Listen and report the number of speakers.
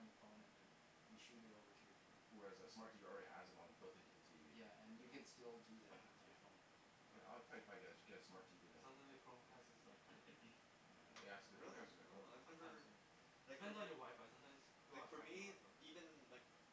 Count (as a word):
four